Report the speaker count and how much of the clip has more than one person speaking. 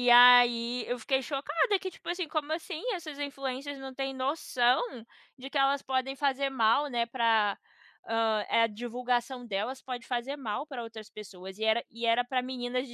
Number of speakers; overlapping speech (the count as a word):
one, no overlap